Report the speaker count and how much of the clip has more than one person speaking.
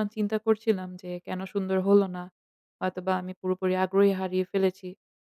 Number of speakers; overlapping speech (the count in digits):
1, no overlap